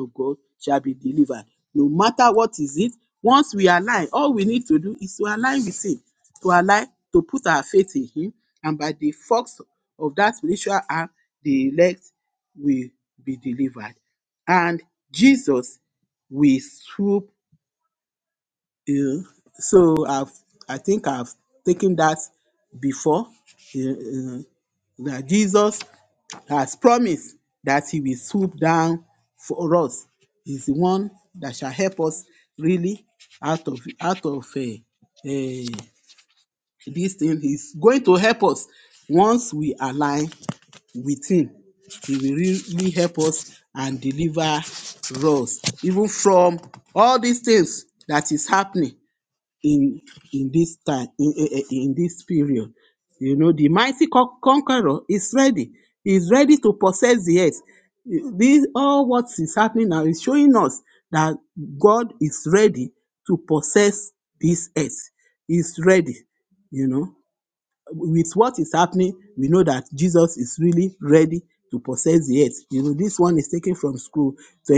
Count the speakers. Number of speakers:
1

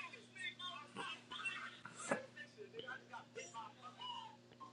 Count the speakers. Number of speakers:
0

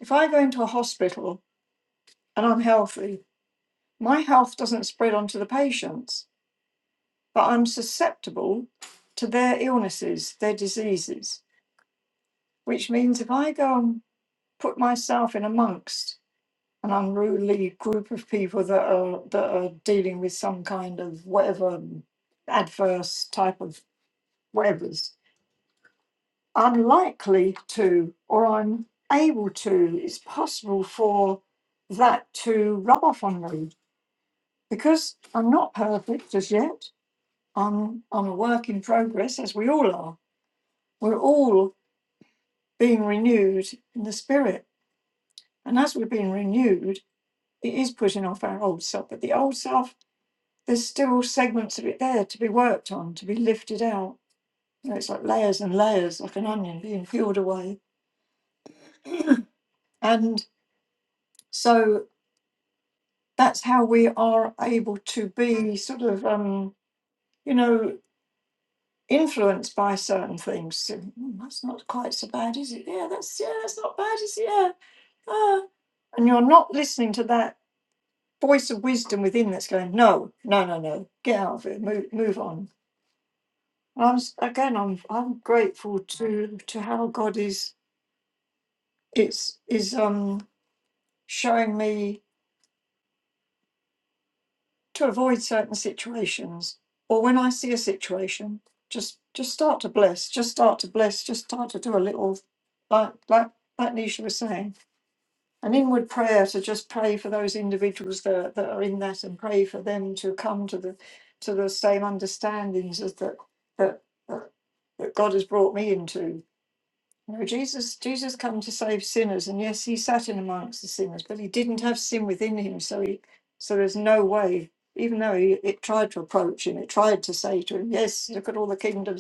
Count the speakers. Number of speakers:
1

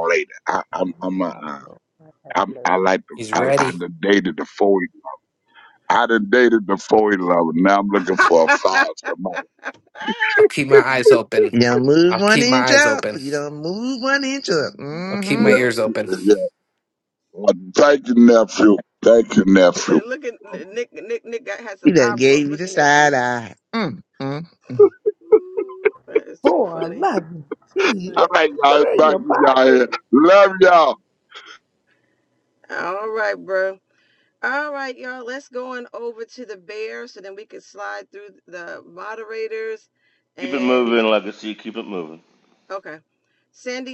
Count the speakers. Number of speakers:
6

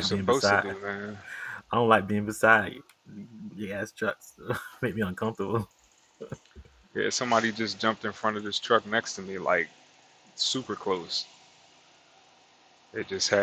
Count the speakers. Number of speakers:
2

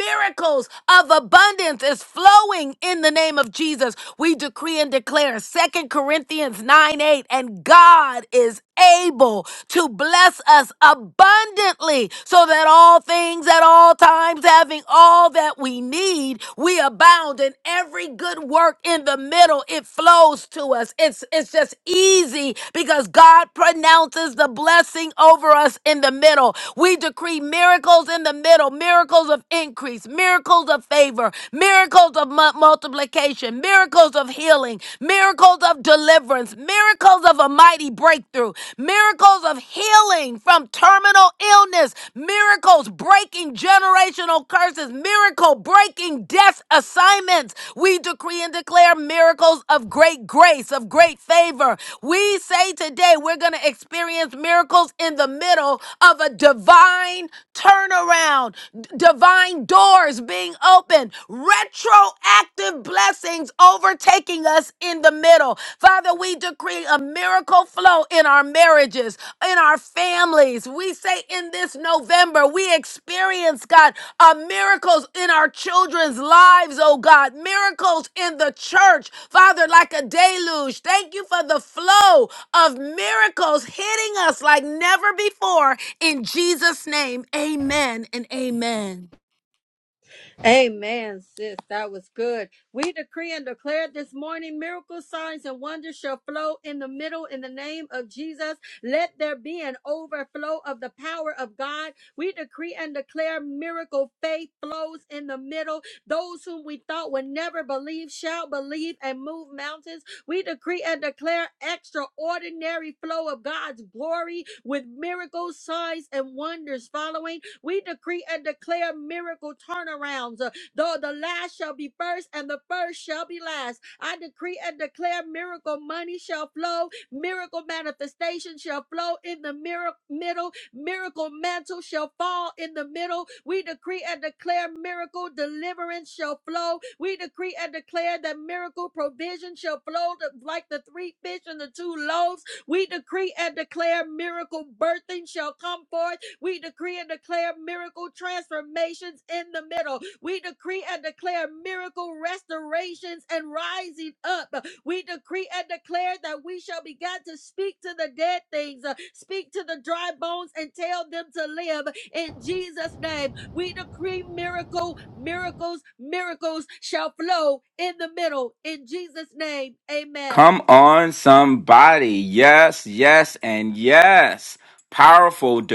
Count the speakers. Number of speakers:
3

